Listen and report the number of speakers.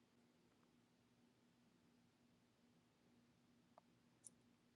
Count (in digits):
0